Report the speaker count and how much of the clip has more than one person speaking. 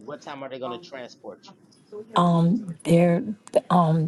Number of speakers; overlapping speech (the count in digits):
2, no overlap